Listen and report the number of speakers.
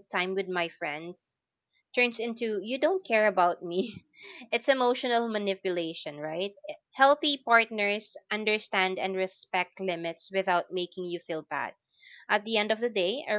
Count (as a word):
one